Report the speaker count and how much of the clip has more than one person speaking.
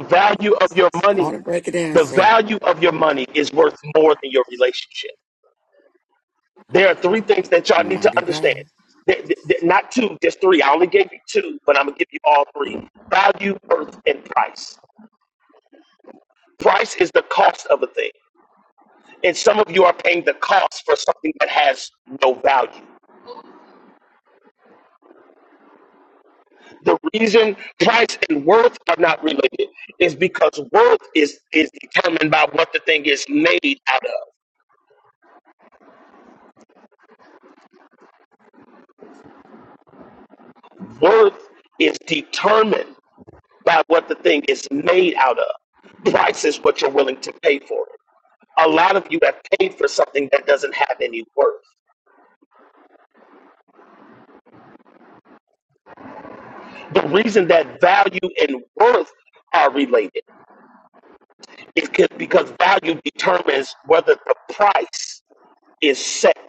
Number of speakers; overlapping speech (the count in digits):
2, about 2%